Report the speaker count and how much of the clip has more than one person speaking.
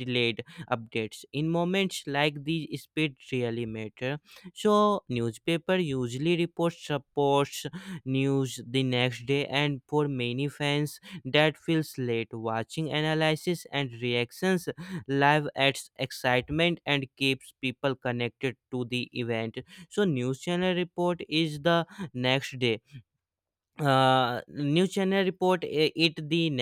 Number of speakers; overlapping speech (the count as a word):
one, no overlap